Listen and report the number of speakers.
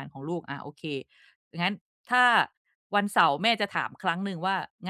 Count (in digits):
1